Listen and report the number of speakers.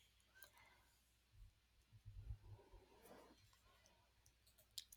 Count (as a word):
zero